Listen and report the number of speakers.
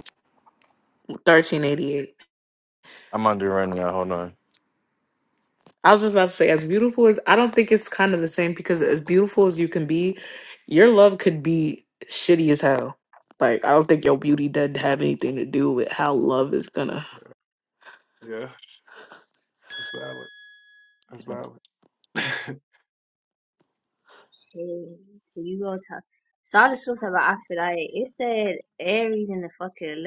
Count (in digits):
4